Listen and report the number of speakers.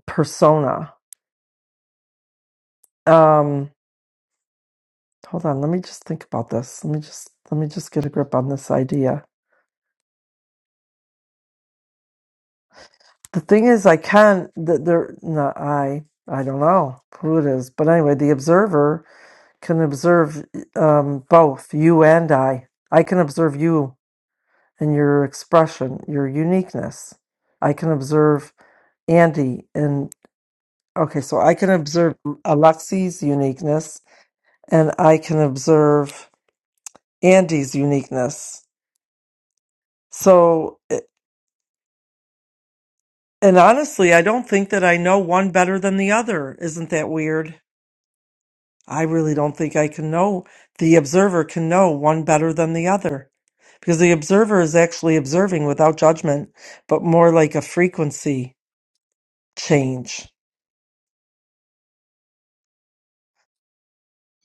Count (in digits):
1